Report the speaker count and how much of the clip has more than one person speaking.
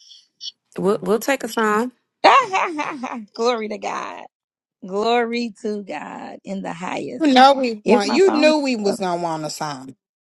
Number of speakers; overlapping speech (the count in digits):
3, about 11%